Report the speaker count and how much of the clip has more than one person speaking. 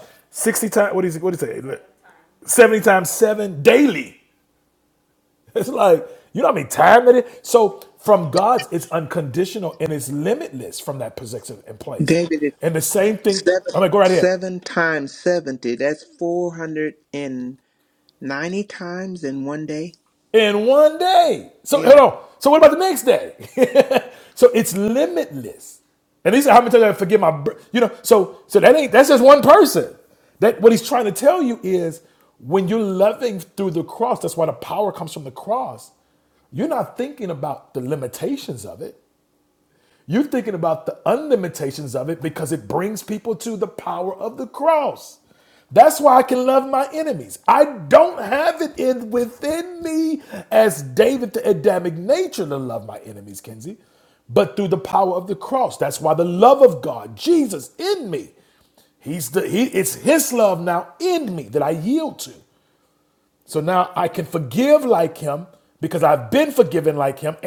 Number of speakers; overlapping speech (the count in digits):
2, about 2%